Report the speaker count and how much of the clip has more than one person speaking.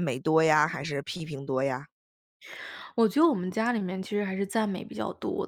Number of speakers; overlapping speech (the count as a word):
two, no overlap